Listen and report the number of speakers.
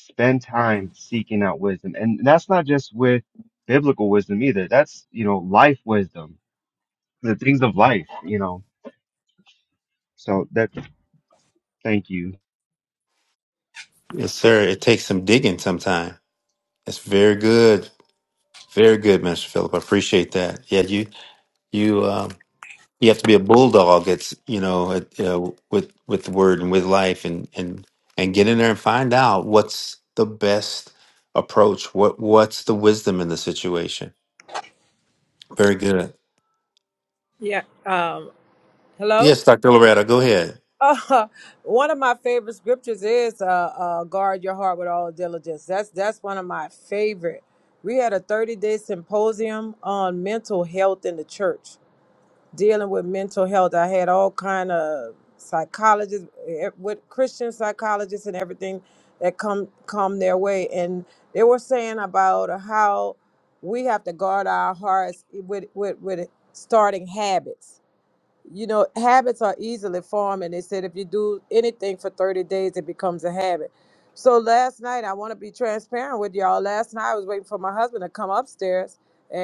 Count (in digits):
3